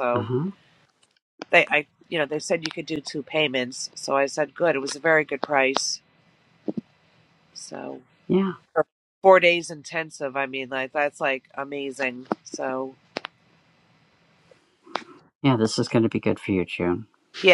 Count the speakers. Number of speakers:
two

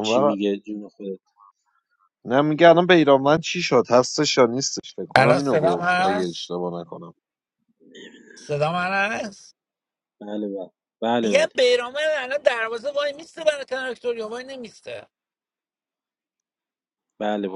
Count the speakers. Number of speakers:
three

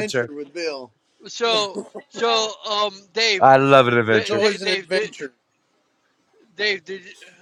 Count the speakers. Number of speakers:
three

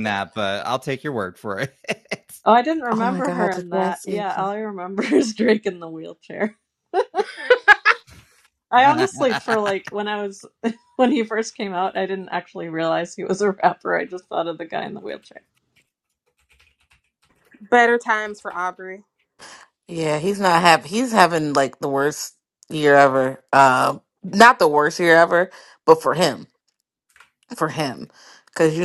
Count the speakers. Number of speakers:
four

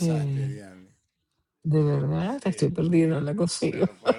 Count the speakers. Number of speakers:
one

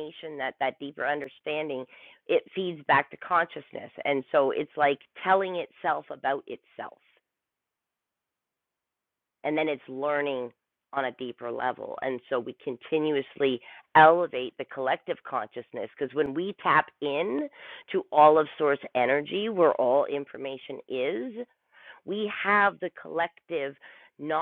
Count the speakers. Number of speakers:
one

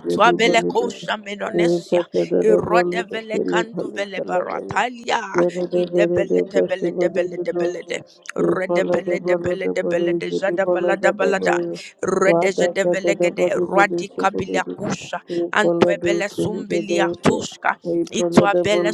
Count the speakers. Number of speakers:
two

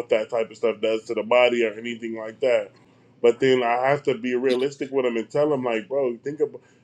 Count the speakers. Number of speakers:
one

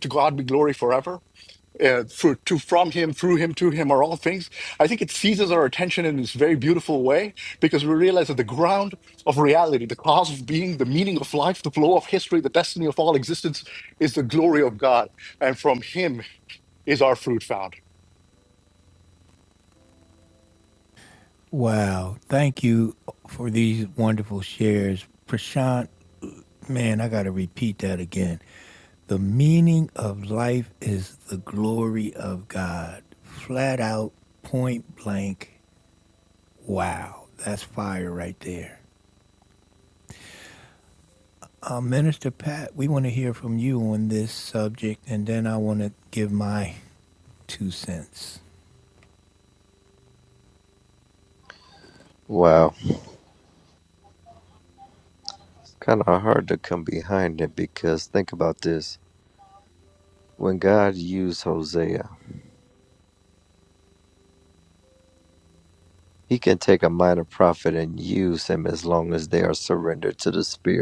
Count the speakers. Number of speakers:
three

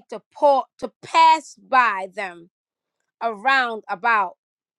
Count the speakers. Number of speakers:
one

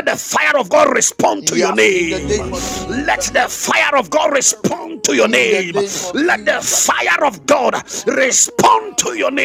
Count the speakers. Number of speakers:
two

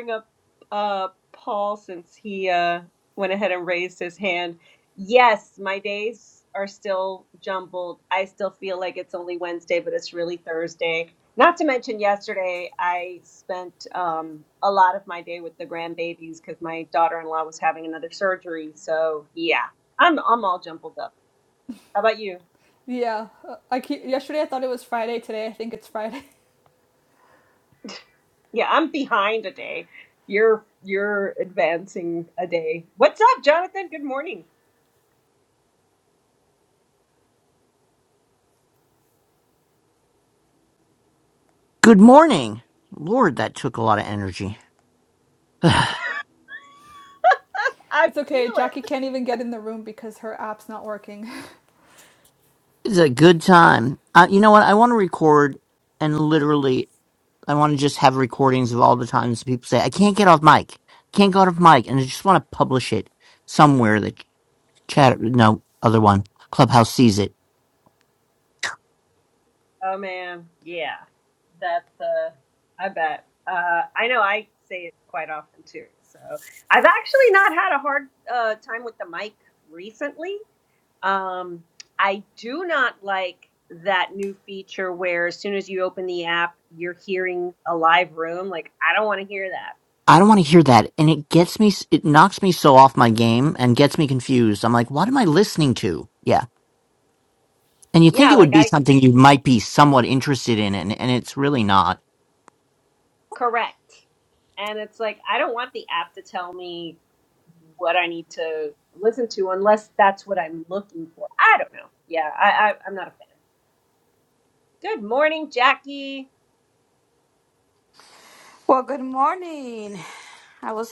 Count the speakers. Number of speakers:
four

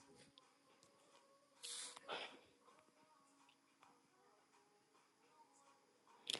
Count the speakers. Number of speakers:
zero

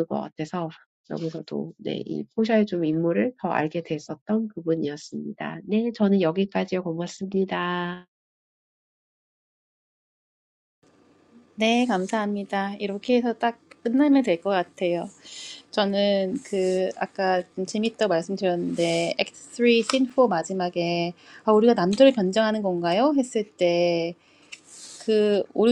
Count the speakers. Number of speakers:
two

